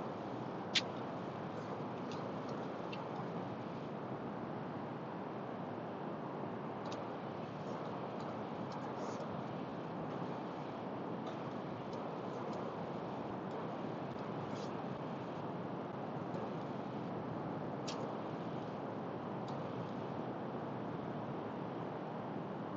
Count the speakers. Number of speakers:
zero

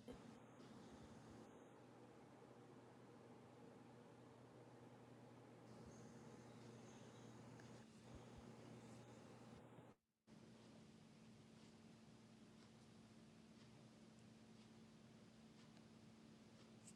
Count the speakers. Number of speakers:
zero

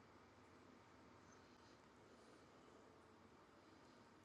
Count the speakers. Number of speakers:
zero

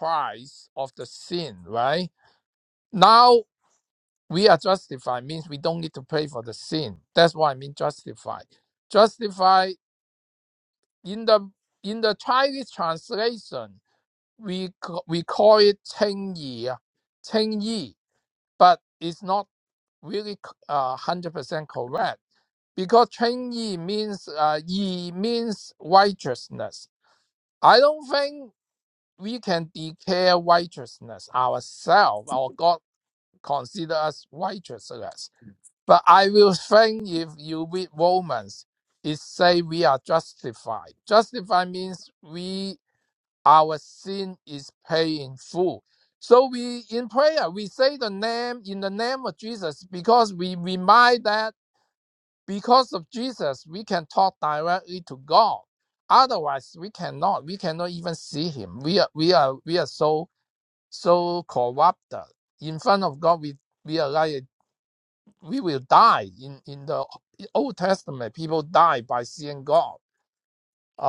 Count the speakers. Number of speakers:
one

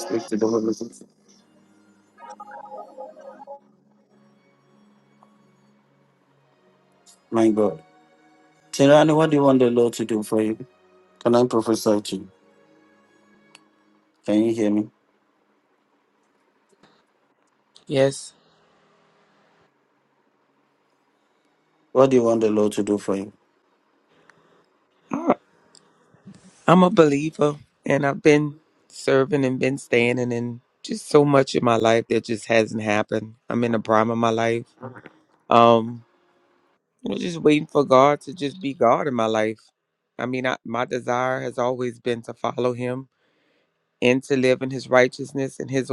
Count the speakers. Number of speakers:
two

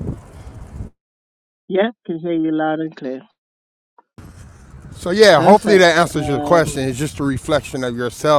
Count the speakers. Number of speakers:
two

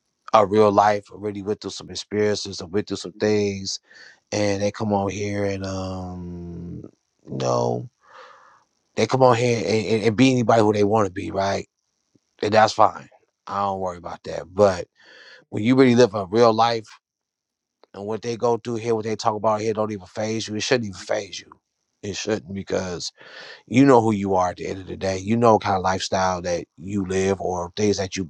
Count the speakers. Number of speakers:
one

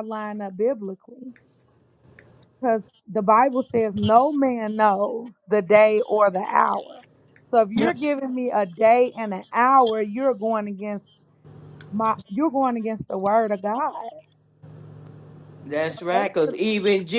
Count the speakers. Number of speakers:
two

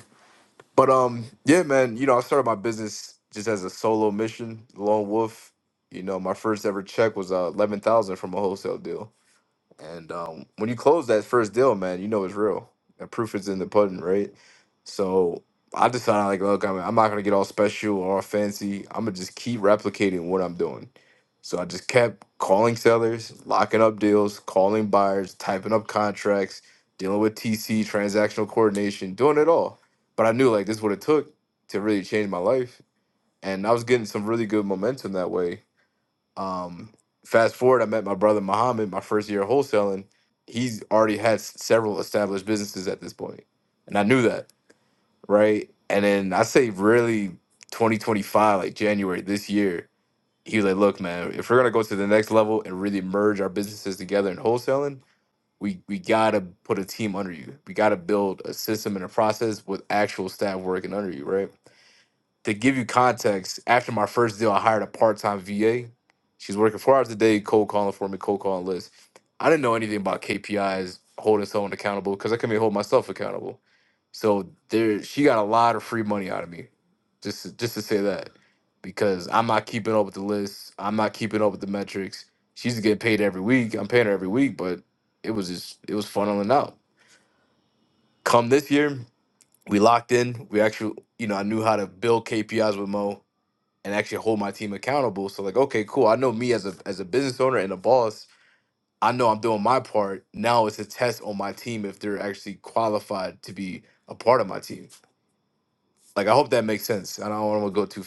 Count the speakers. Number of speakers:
one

